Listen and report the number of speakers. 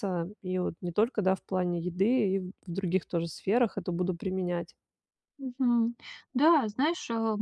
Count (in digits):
2